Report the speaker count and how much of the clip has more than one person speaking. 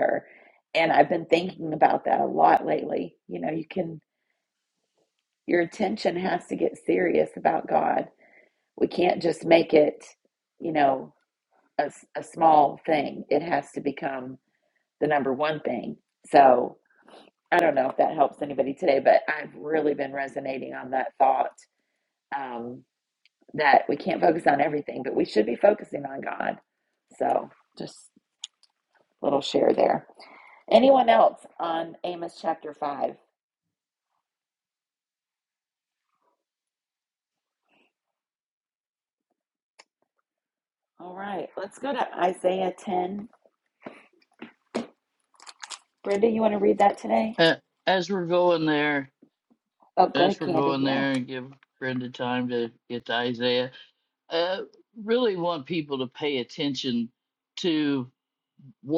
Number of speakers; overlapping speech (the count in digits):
2, about 2%